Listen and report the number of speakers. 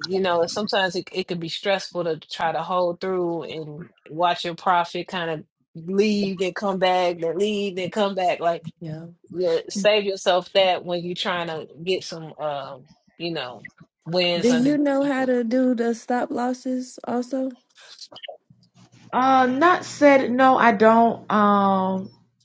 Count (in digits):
3